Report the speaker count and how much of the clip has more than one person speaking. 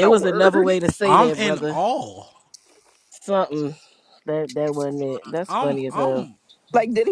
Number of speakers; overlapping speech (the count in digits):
3, about 31%